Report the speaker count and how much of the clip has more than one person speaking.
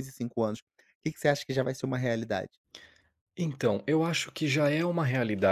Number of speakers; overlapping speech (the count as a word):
two, no overlap